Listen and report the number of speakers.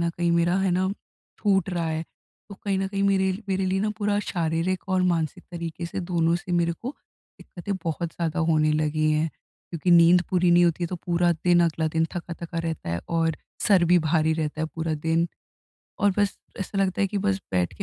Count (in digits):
1